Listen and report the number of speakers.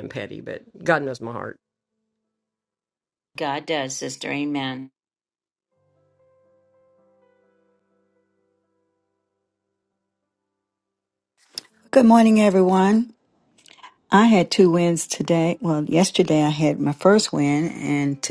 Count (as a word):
three